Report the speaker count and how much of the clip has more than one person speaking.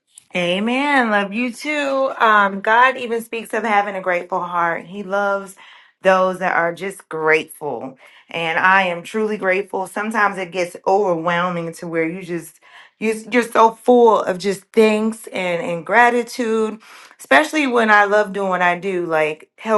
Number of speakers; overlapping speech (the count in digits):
1, no overlap